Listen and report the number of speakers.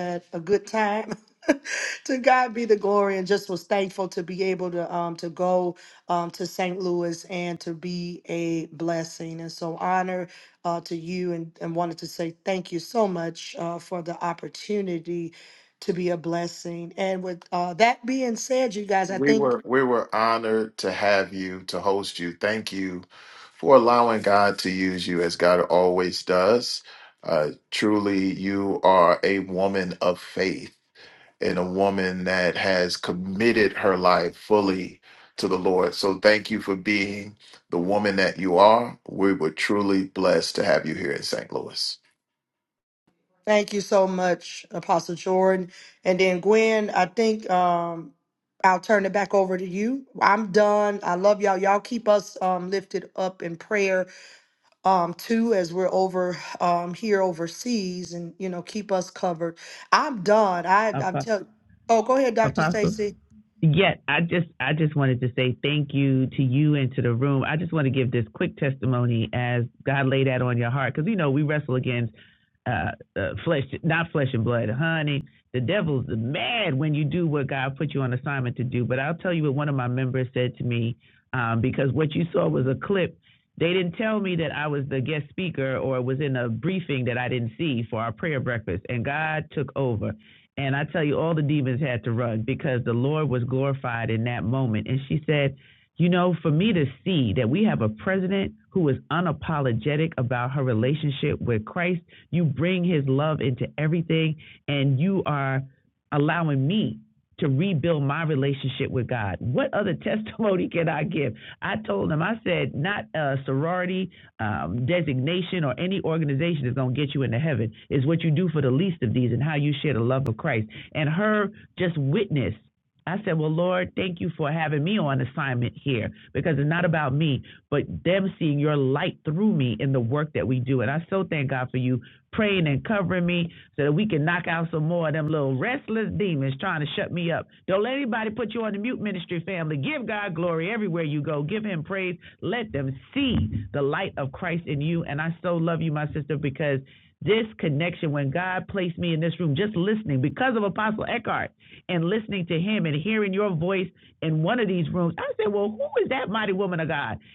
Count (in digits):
3